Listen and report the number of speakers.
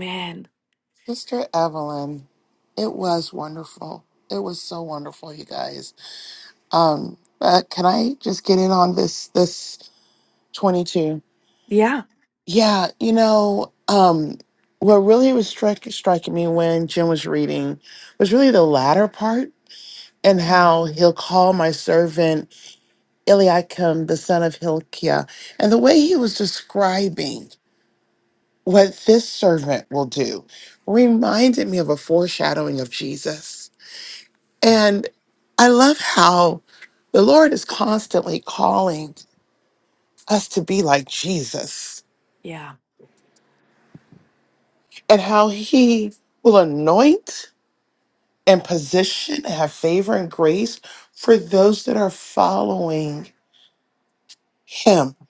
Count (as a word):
two